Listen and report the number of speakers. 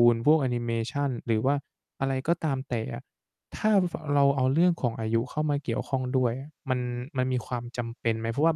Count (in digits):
1